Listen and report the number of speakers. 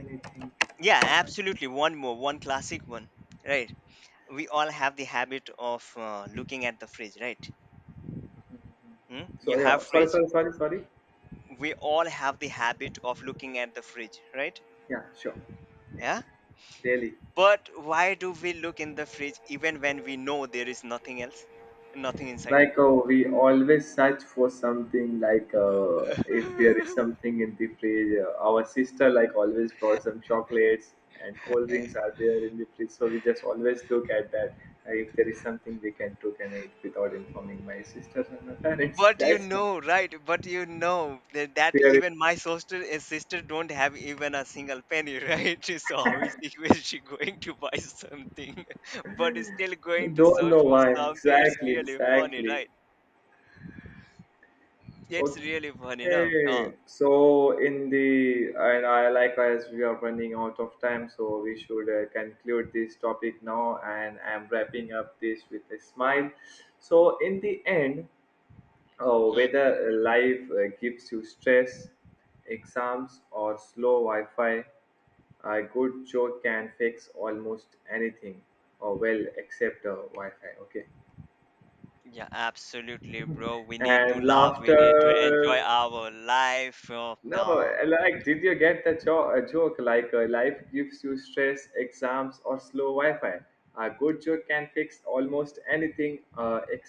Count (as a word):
two